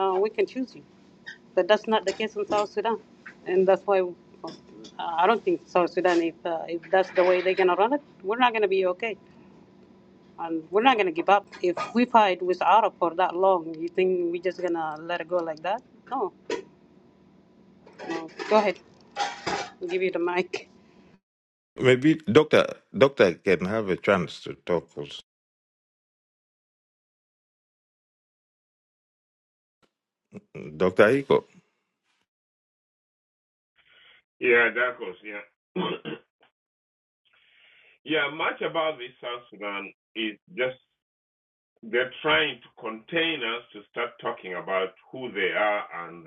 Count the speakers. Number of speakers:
3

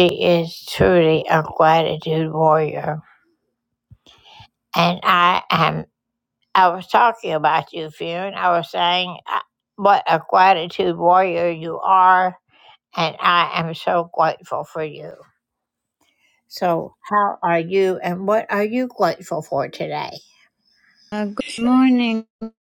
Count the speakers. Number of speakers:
2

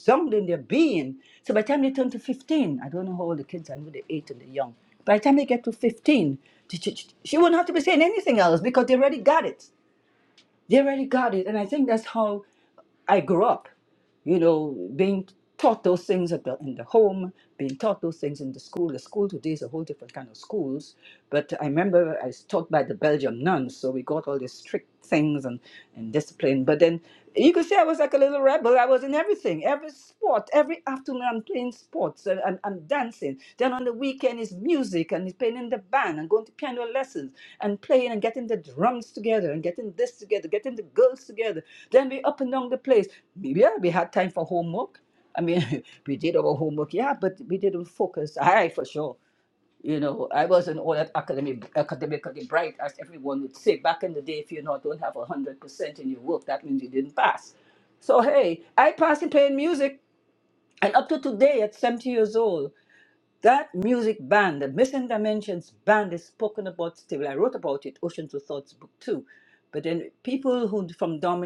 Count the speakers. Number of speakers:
1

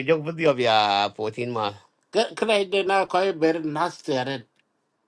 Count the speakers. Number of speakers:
2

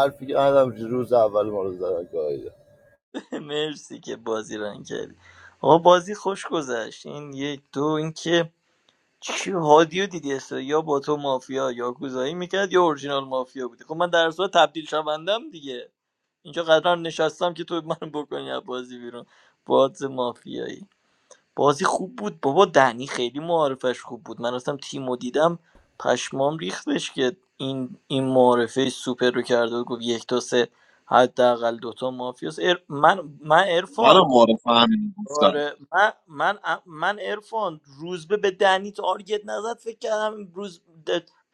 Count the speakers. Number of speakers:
3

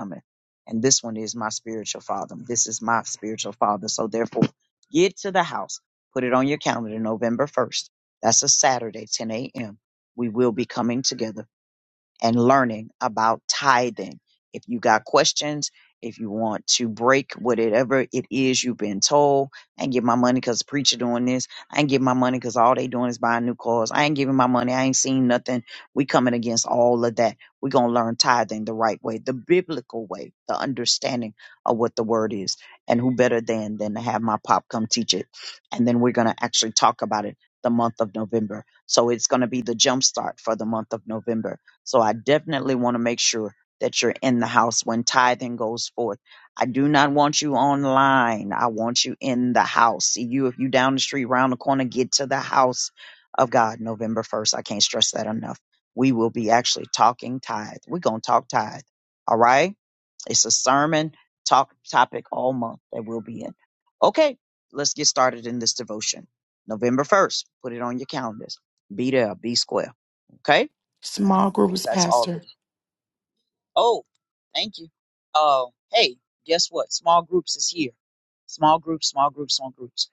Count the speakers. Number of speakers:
2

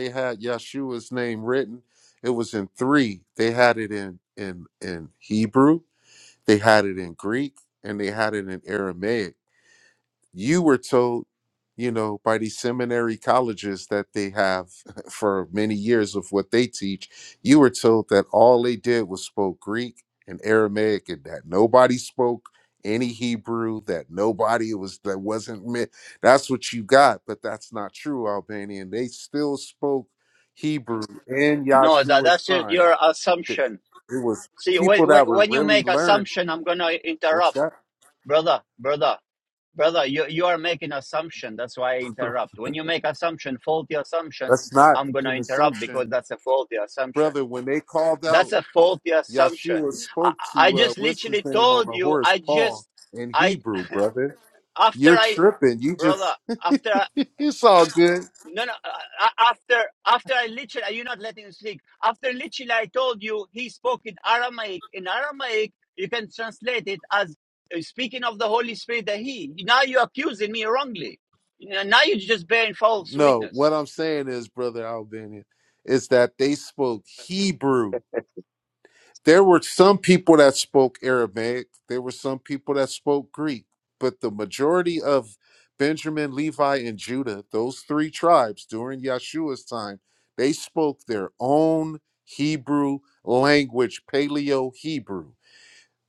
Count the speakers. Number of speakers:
2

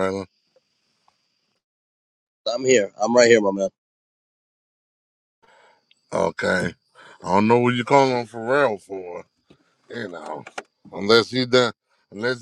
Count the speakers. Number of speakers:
2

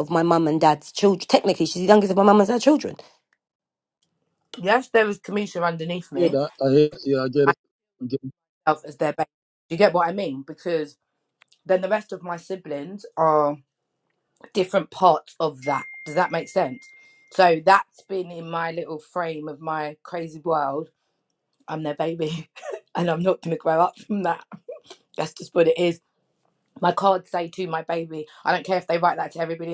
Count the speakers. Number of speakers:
3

